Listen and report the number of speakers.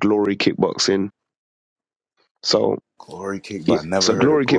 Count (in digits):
2